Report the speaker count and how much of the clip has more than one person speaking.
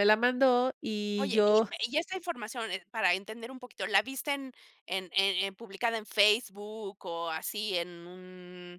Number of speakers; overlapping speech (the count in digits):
2, about 6%